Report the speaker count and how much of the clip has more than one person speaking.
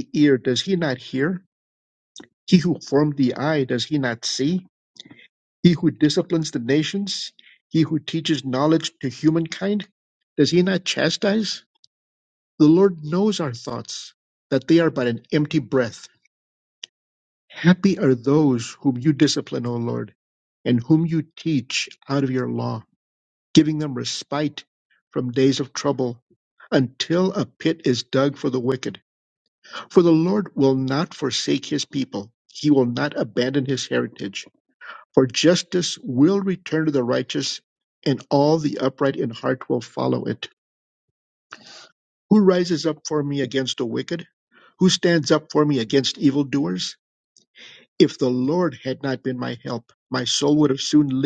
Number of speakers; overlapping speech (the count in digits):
1, no overlap